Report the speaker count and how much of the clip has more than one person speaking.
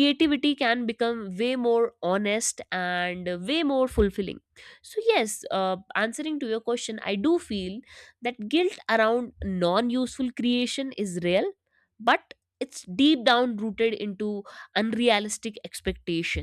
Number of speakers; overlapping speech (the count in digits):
1, no overlap